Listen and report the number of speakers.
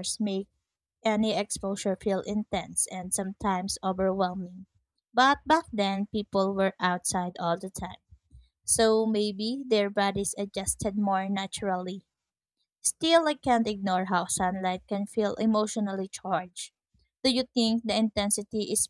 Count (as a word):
one